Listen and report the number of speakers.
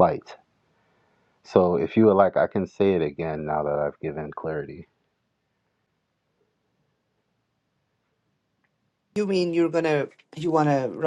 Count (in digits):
2